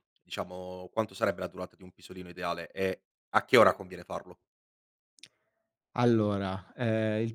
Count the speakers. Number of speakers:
2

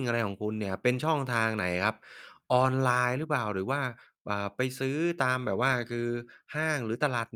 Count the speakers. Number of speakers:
1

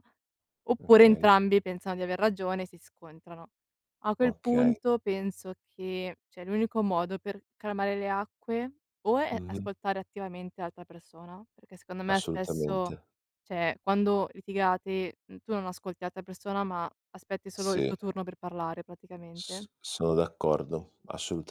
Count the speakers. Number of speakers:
2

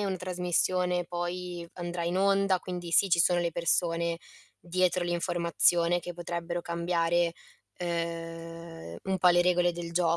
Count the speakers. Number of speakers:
1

